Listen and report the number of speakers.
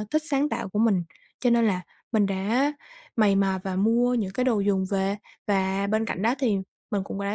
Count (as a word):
one